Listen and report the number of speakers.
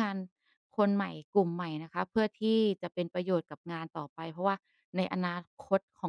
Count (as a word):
one